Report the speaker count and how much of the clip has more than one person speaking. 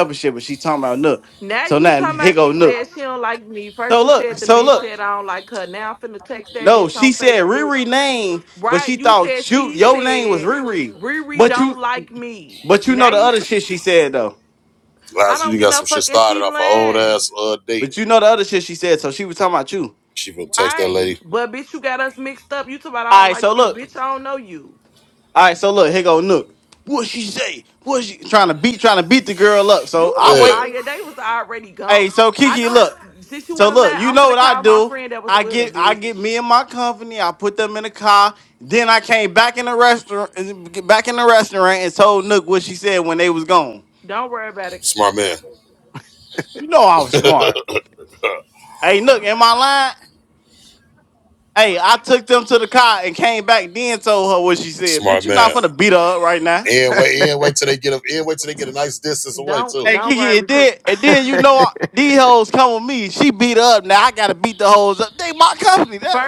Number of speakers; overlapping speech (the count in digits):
3, about 23%